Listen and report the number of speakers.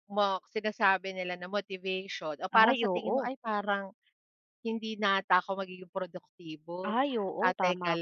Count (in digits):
2